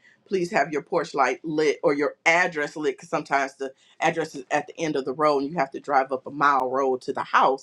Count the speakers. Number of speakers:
1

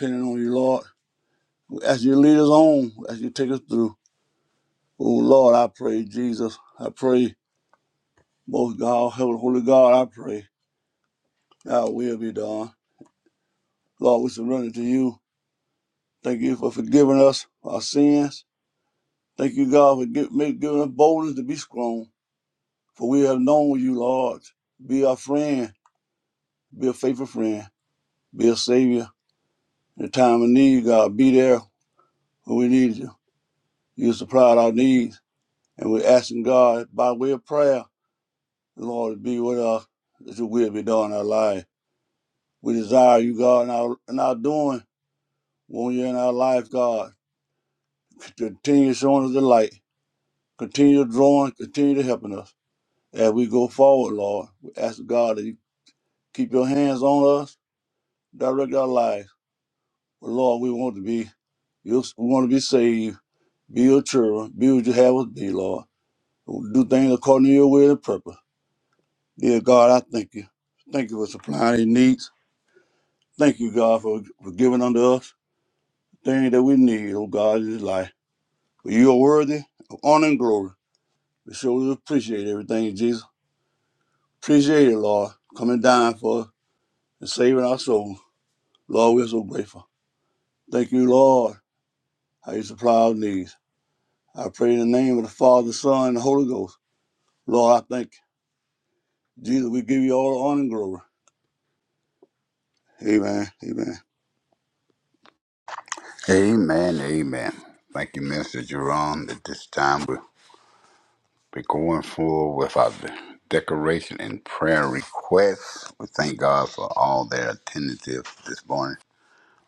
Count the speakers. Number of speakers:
2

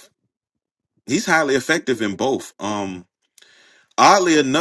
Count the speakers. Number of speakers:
1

